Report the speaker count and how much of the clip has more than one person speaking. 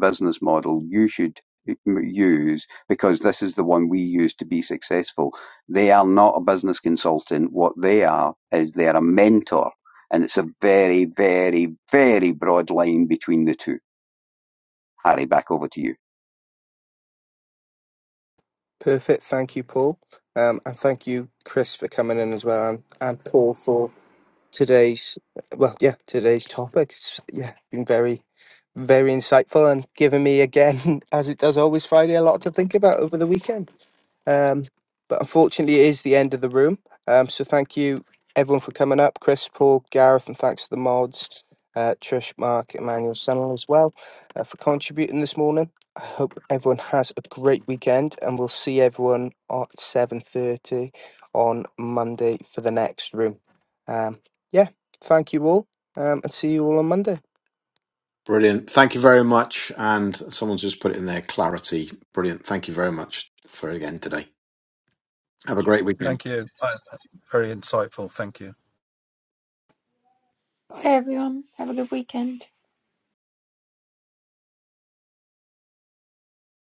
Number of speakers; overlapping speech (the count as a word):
five, under 1%